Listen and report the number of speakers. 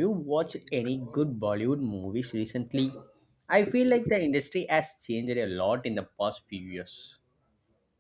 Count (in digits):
1